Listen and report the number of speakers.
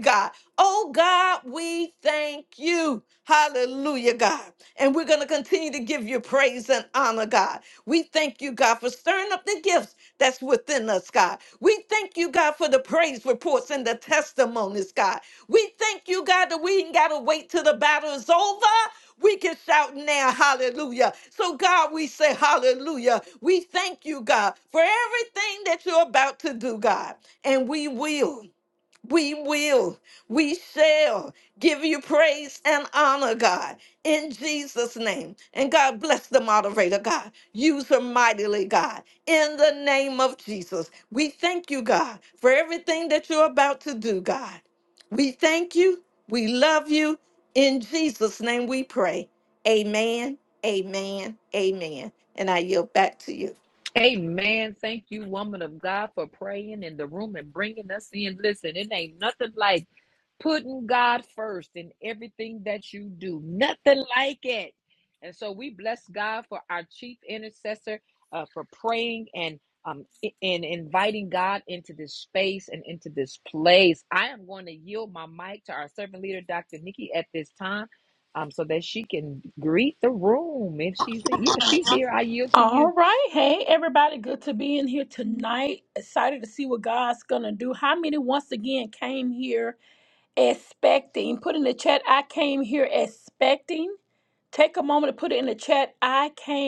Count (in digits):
3